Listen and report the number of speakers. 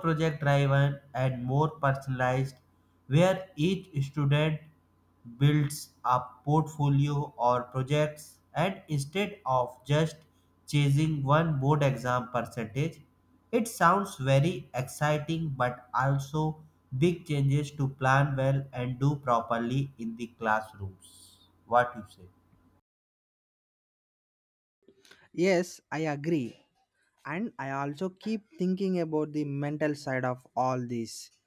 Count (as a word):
two